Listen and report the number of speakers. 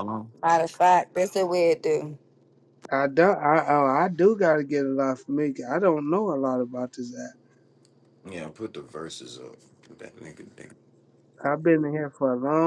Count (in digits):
3